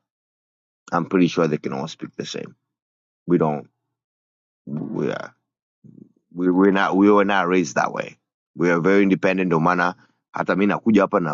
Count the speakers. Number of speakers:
one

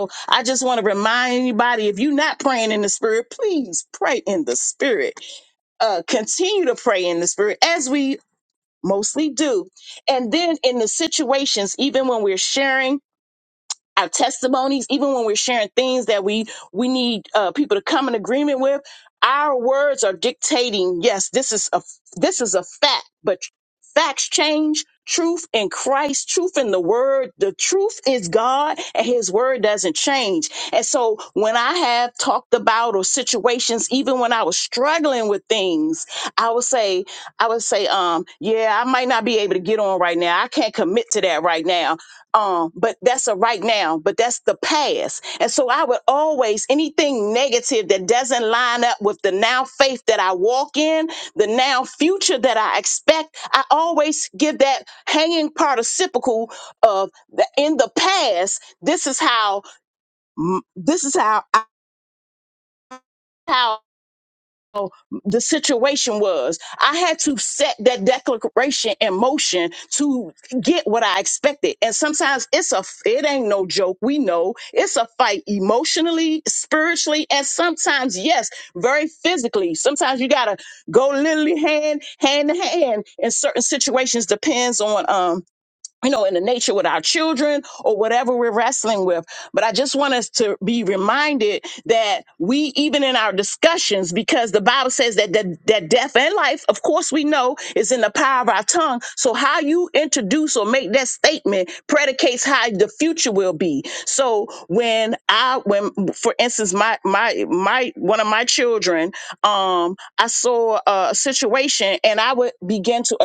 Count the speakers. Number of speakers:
one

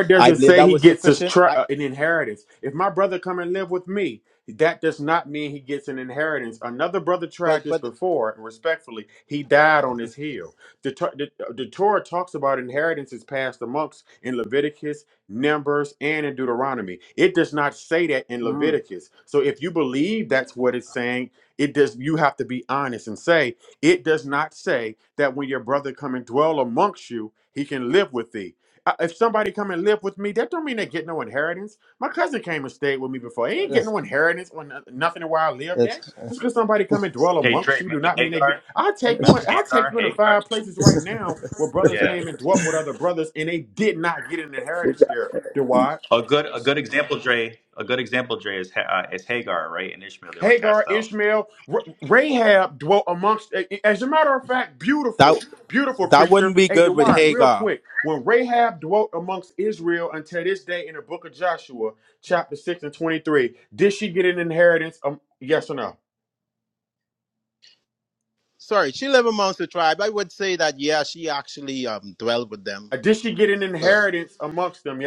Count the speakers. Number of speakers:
three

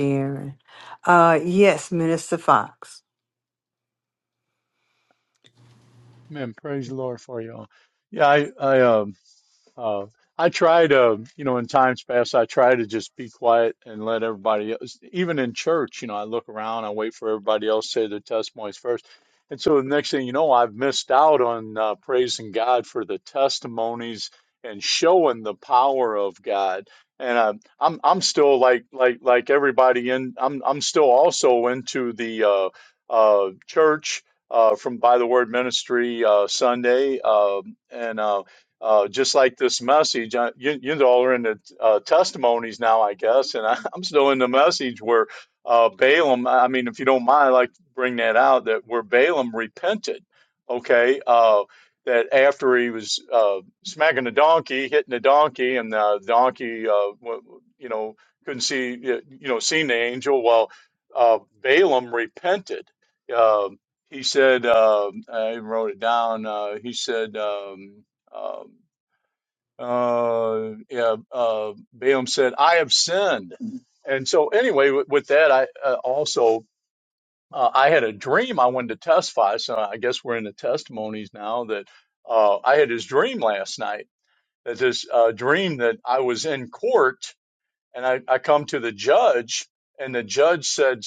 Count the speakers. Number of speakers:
two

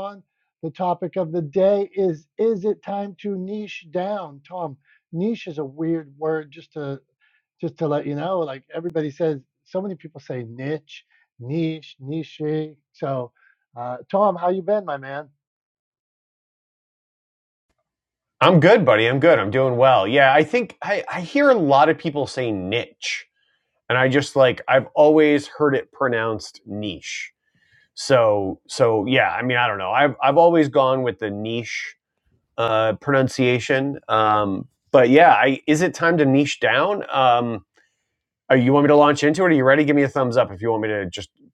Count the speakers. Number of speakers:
two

